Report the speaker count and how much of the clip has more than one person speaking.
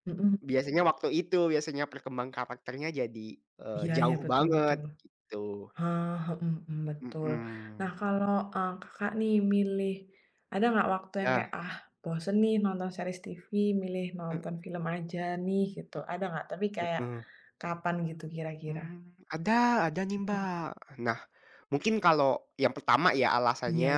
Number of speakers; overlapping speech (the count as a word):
two, about 11%